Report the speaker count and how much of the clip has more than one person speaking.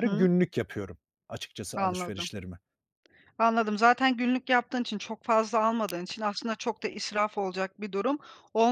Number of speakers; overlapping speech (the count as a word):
two, about 9%